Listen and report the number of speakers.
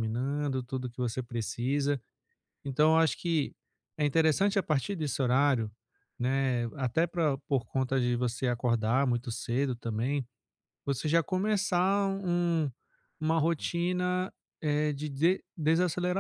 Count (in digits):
1